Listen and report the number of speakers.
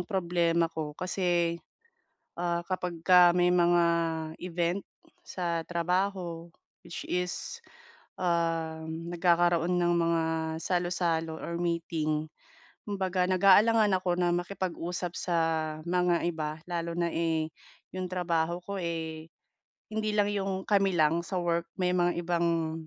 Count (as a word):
one